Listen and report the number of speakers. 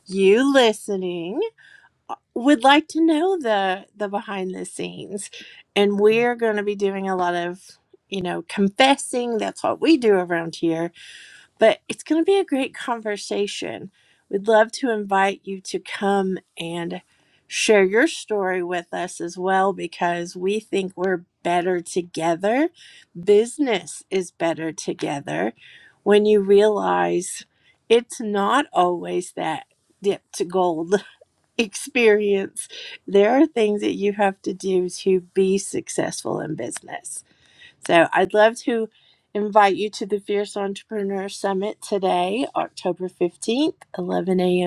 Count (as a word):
one